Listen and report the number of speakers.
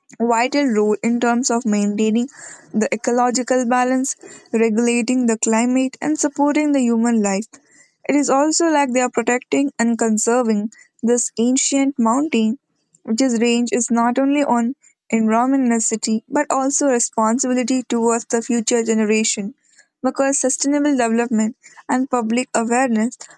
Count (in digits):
1